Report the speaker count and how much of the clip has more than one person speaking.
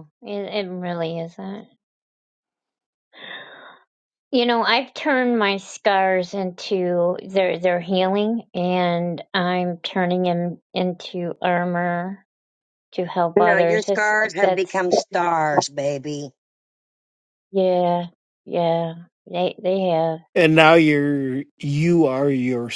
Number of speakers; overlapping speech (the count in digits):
3, about 6%